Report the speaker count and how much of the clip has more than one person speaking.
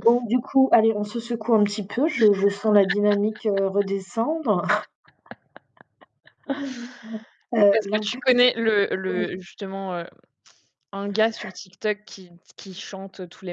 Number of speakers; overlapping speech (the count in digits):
2, about 6%